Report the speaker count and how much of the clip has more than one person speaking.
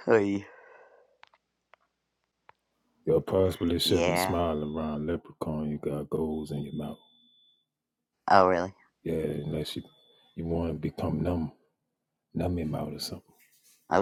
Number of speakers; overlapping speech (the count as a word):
two, about 4%